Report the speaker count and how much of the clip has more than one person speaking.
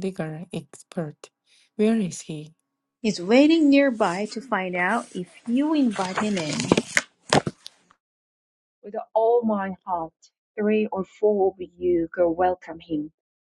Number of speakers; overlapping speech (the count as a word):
three, no overlap